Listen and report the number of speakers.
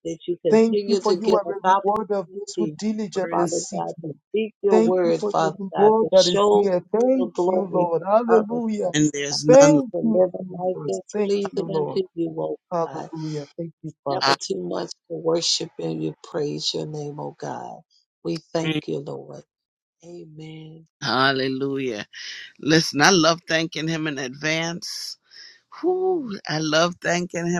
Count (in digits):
3